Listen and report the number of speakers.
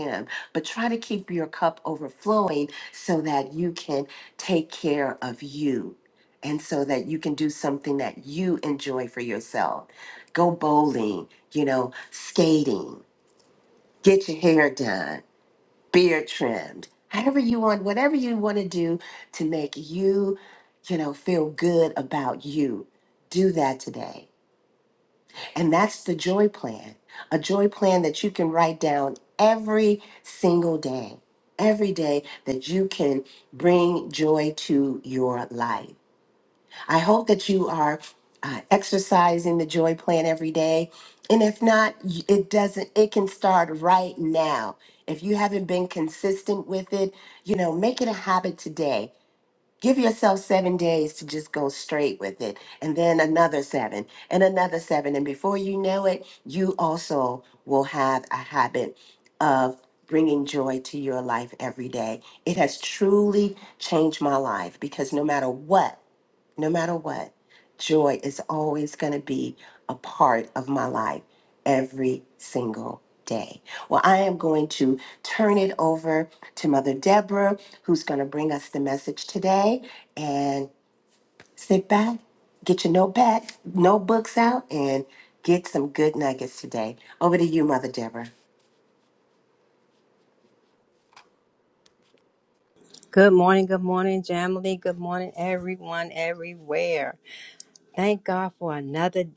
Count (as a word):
two